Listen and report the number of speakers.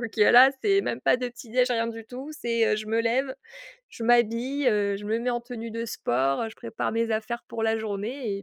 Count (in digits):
1